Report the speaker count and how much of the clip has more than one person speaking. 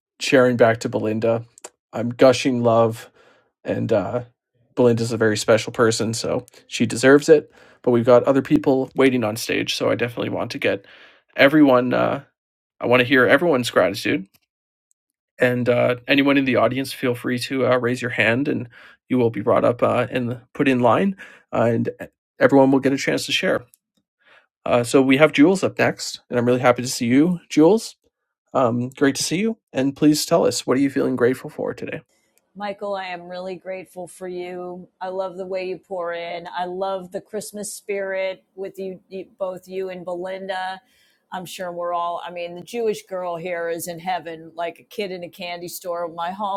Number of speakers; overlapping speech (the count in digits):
2, no overlap